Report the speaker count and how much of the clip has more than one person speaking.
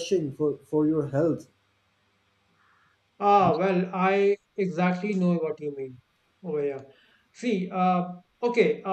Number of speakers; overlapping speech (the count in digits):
2, no overlap